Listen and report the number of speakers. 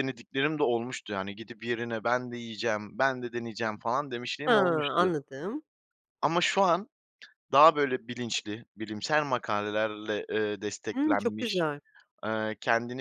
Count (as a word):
two